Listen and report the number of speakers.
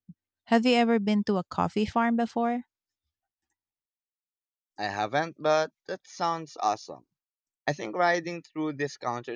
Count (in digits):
2